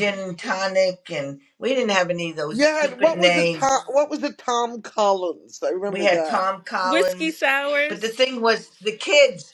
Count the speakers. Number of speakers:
3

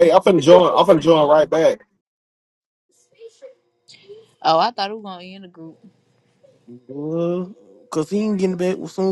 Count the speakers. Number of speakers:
3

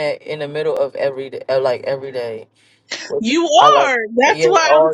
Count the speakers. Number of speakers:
2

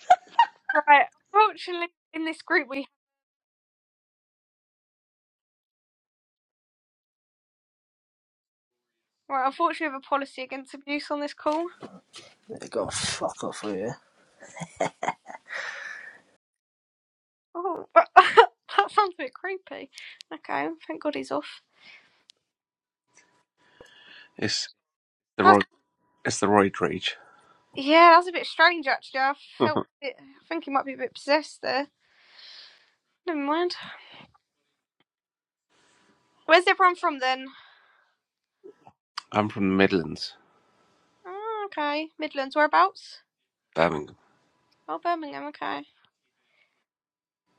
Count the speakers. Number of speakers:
3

